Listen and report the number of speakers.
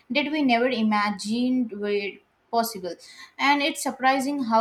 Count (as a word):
one